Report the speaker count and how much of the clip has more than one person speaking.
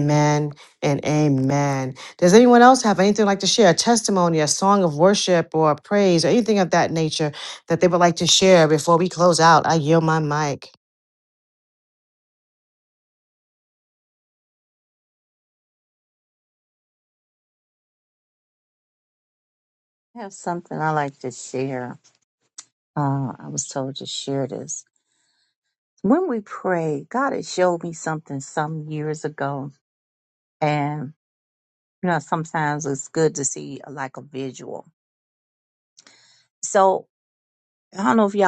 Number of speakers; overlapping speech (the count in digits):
2, no overlap